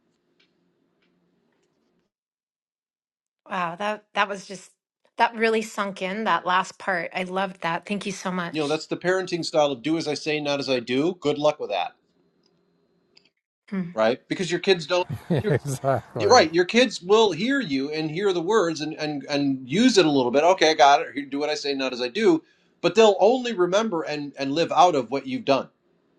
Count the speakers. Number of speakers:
3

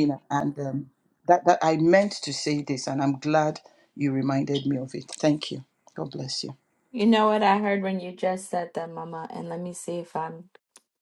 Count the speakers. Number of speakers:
2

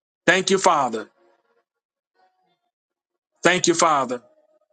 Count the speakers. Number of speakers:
1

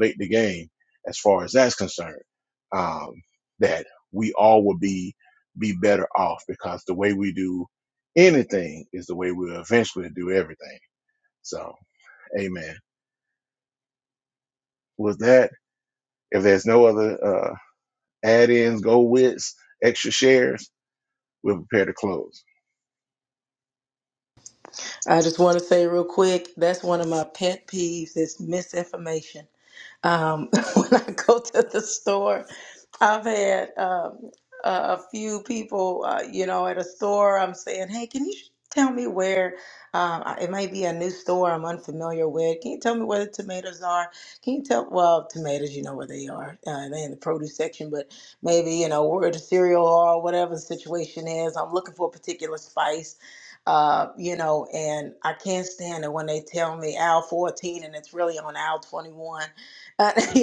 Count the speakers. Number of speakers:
2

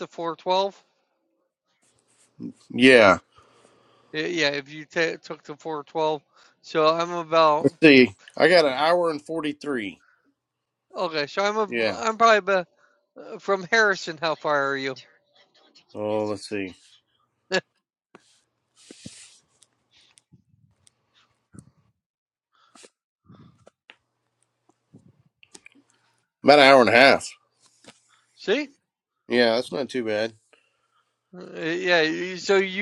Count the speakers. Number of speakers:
2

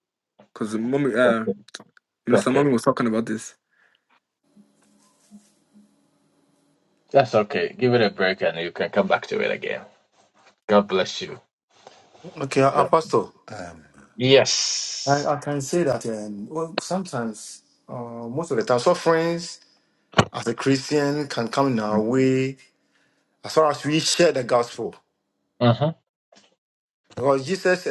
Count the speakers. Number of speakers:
3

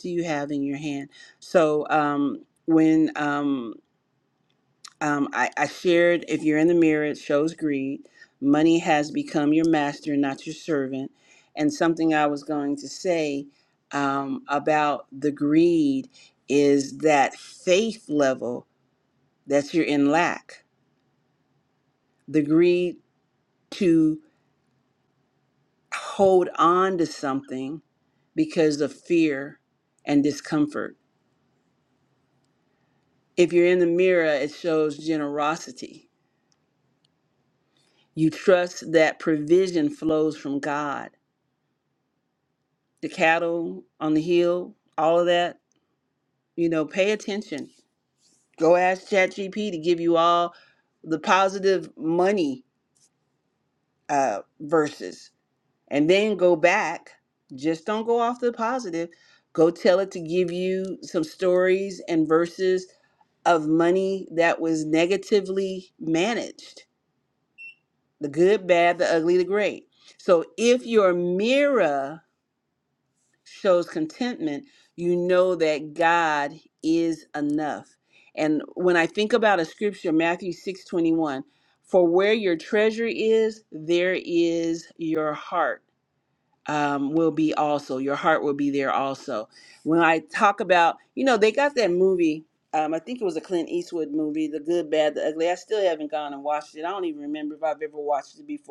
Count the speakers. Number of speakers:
1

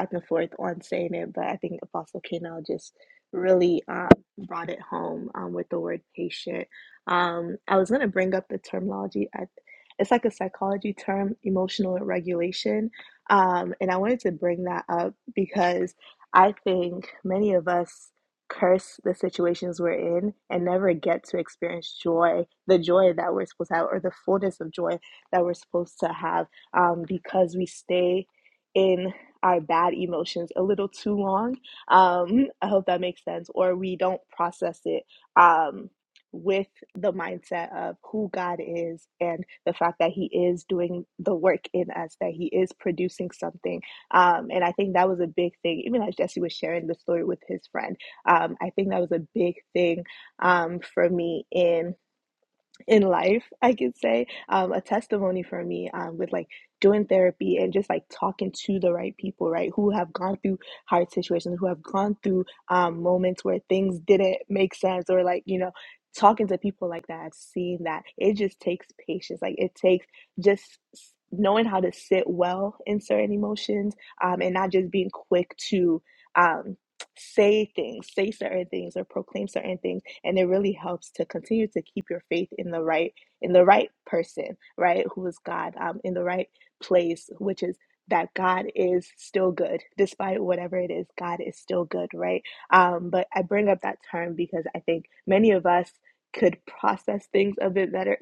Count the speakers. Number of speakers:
1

